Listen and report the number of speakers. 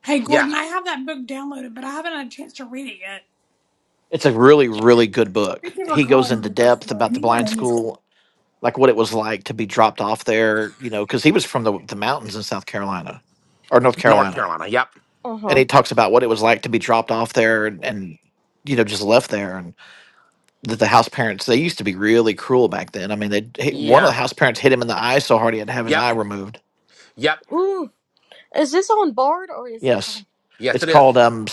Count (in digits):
4